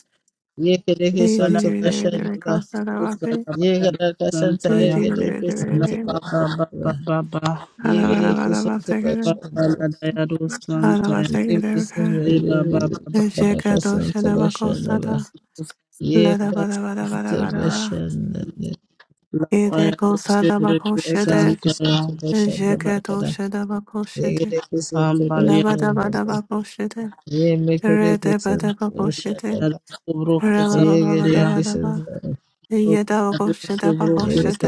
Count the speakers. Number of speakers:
three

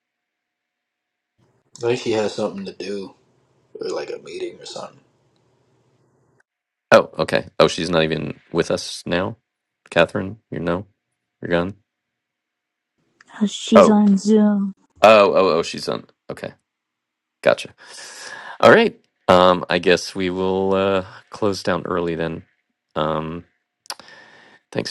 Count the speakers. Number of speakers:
three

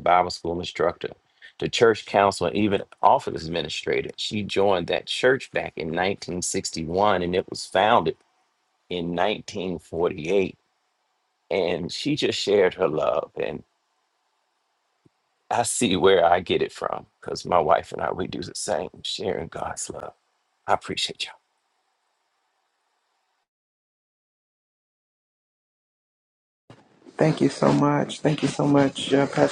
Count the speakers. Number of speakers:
two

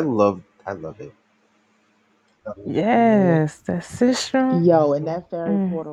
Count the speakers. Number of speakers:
three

